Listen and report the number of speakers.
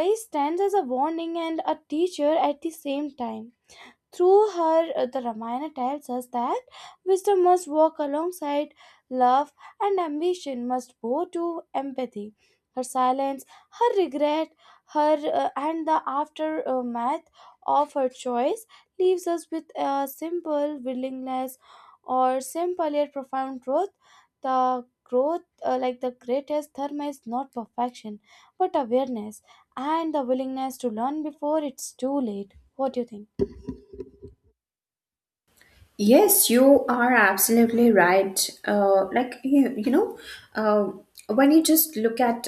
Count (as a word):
two